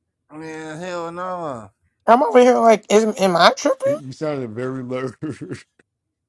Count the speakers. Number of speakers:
three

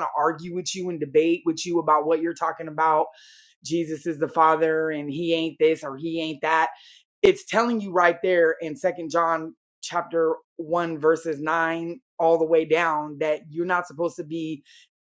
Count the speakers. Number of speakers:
one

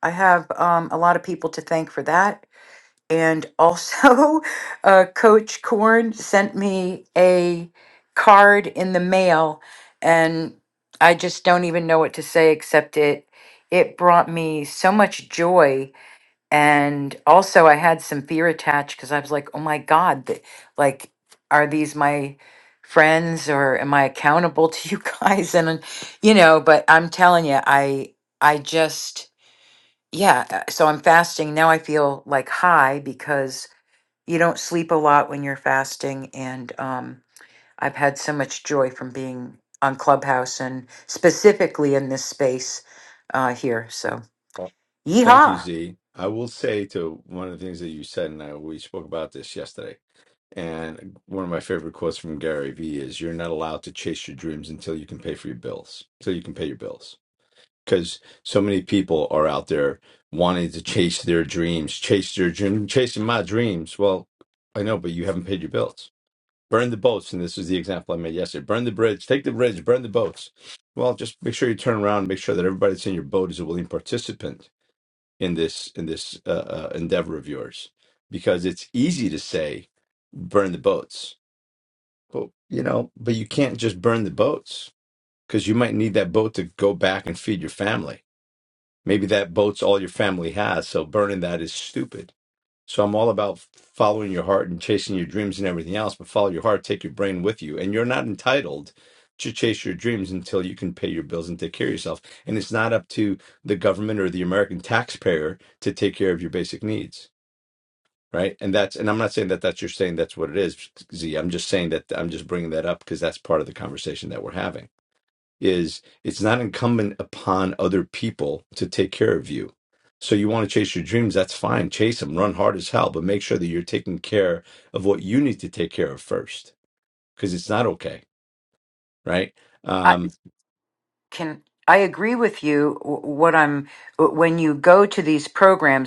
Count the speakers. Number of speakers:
two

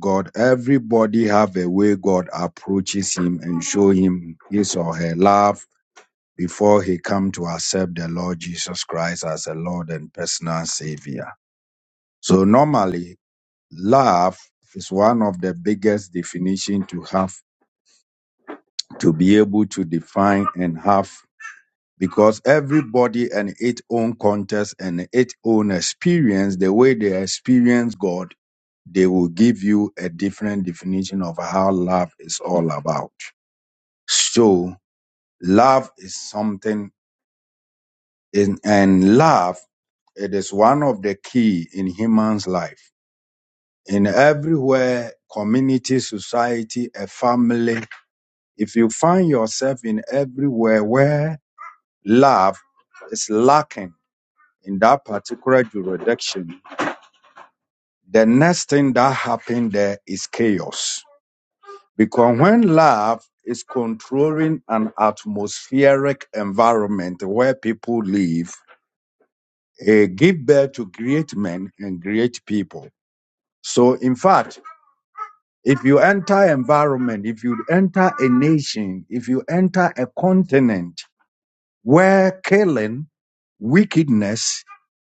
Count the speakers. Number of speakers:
one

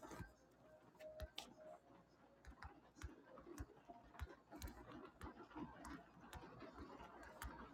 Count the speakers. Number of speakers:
zero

